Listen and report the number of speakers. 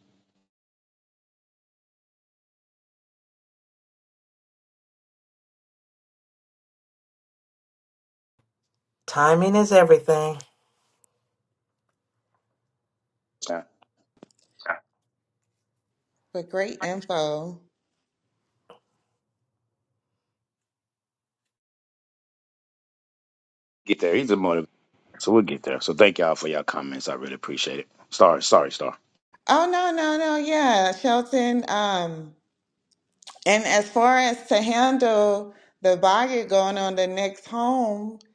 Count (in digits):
3